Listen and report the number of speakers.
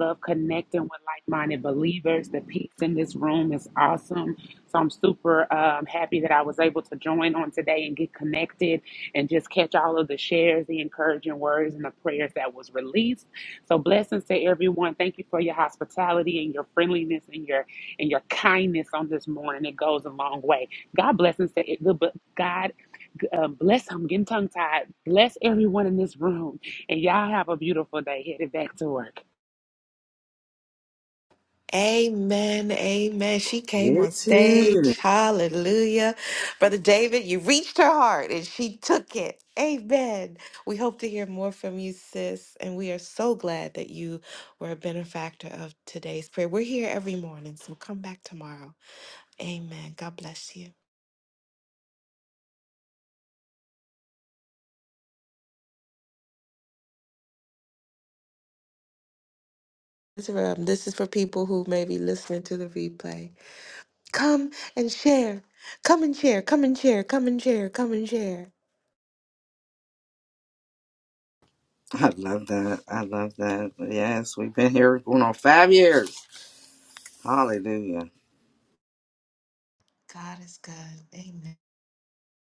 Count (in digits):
3